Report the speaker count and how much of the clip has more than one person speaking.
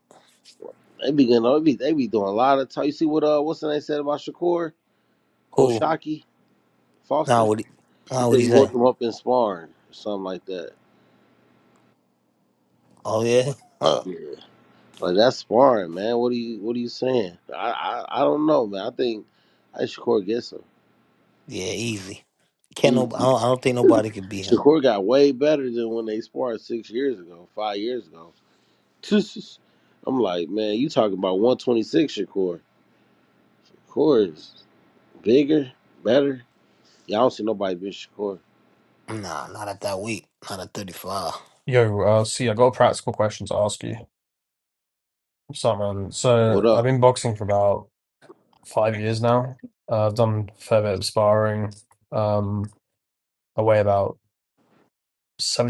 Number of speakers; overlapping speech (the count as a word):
three, about 4%